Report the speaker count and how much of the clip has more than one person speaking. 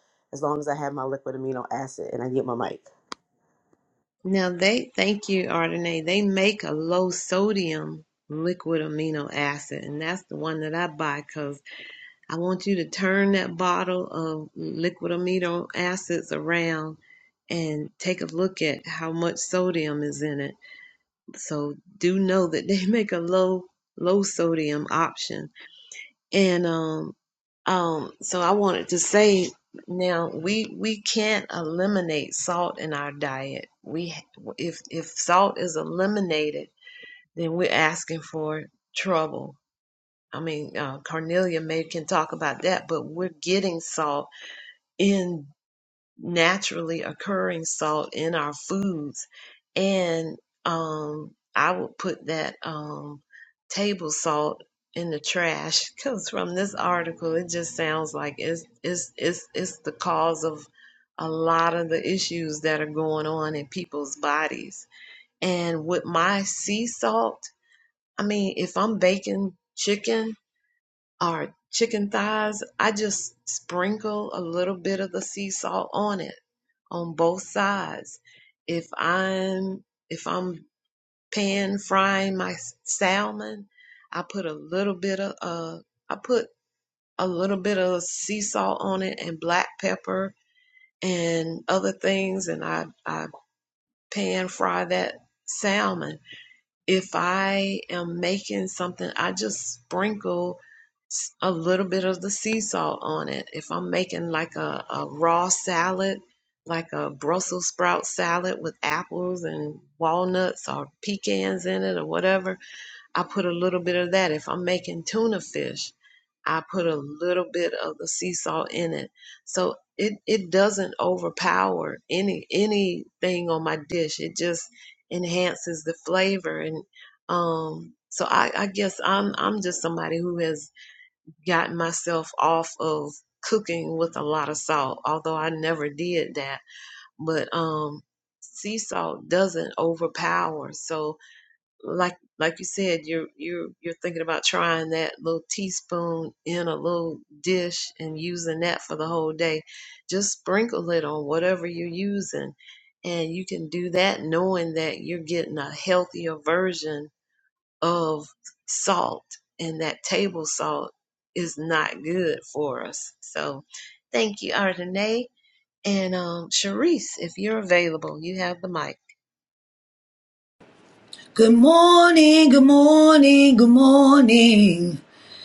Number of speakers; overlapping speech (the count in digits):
3, no overlap